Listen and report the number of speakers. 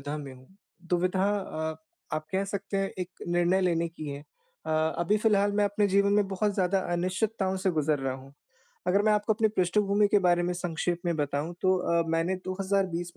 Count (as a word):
one